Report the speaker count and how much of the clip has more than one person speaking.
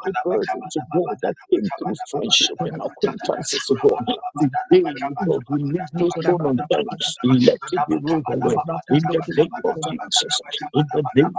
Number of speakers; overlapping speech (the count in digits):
1, no overlap